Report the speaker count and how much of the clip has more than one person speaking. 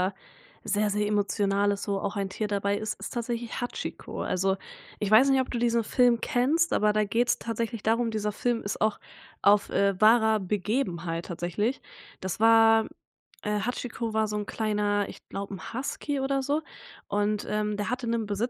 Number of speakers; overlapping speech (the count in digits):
1, no overlap